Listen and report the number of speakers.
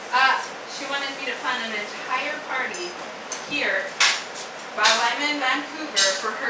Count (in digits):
1